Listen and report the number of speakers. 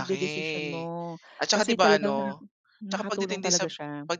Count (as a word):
two